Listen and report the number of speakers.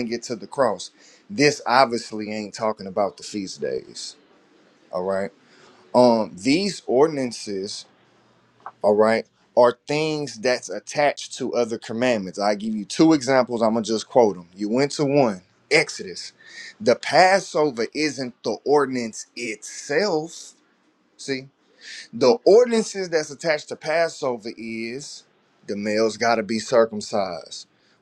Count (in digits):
1